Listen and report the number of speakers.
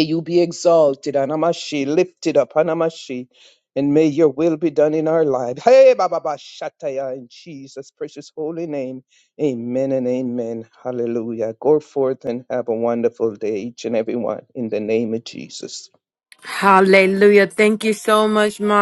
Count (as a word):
two